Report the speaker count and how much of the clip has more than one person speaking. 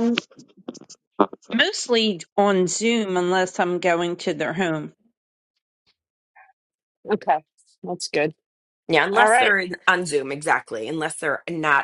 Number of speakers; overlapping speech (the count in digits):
3, about 3%